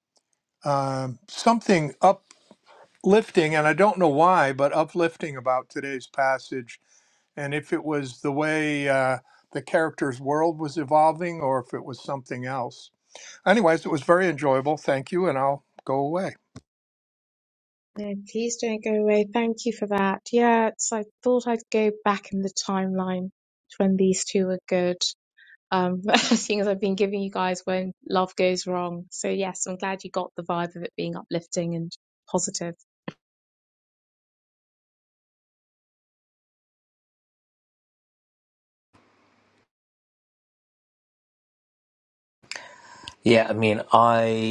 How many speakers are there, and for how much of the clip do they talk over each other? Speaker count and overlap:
three, no overlap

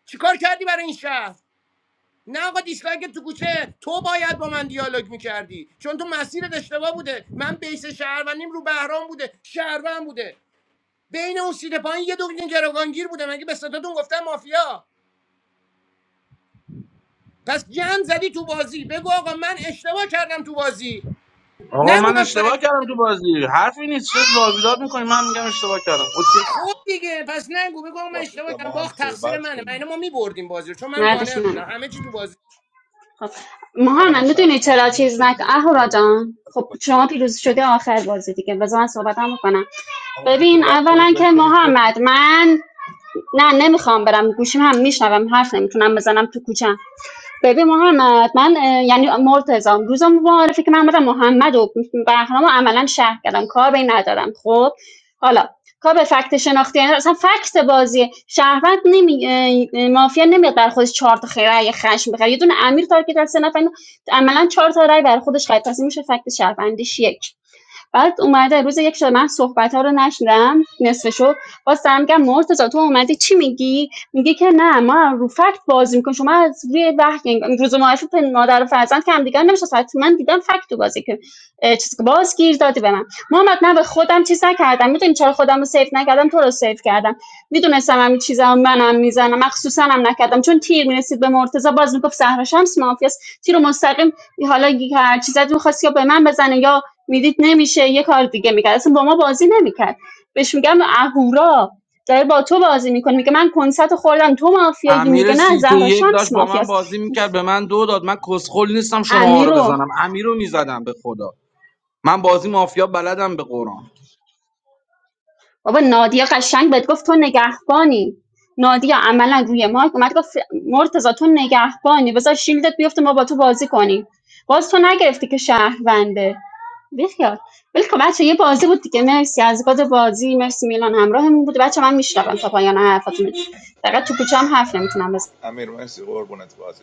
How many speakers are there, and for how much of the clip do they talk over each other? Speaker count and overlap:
four, about 3%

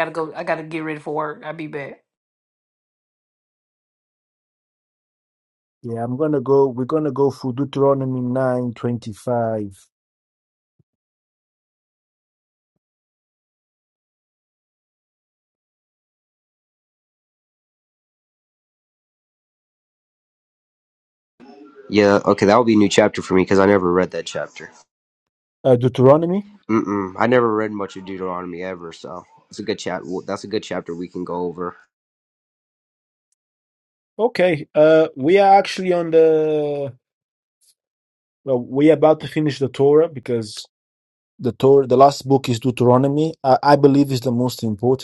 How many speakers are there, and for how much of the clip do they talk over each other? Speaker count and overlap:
three, no overlap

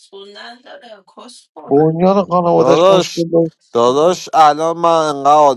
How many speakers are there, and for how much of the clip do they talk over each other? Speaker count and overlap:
three, about 14%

